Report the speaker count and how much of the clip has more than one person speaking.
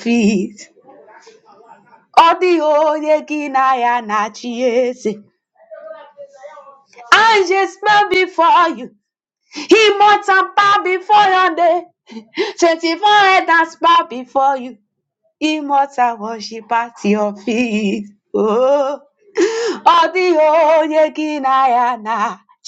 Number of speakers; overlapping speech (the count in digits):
1, no overlap